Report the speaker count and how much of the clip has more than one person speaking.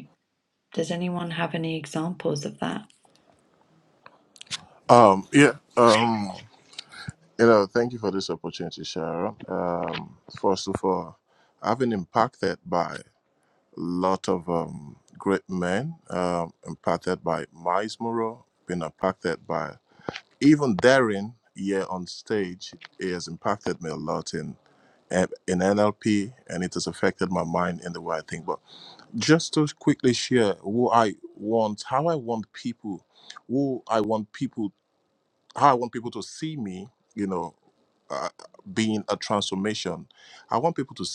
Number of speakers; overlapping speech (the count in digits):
2, no overlap